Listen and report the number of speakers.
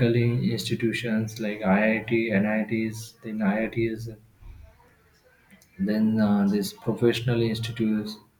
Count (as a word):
one